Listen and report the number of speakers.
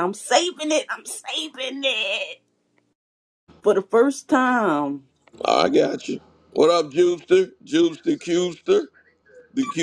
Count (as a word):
two